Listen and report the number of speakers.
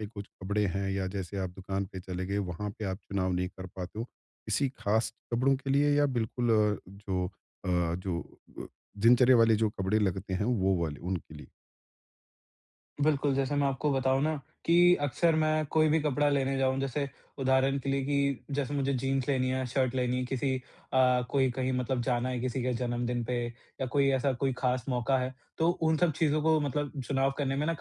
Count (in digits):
2